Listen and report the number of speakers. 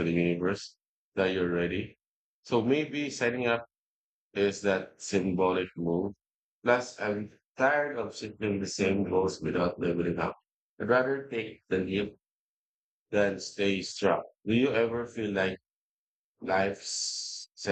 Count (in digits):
1